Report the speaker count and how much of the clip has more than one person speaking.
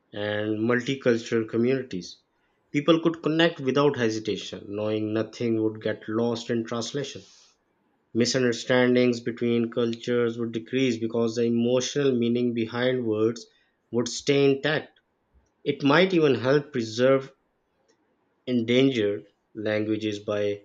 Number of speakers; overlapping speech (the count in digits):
1, no overlap